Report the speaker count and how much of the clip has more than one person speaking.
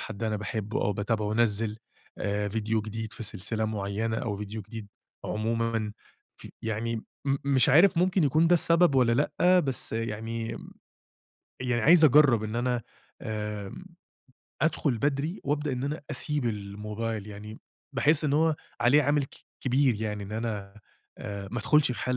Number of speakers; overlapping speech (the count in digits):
1, no overlap